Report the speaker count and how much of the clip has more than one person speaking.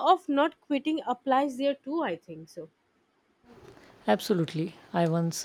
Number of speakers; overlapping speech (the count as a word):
two, no overlap